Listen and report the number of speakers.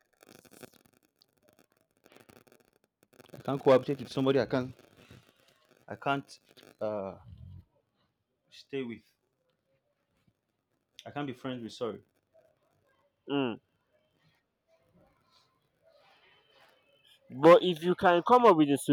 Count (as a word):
two